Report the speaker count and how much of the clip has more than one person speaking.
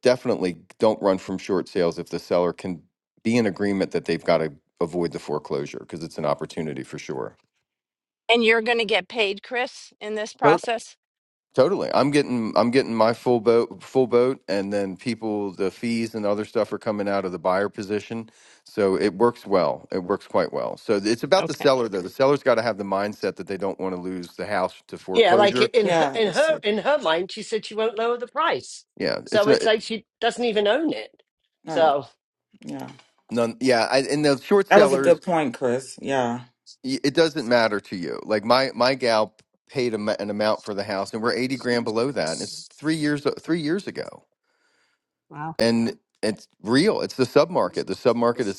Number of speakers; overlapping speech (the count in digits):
4, about 5%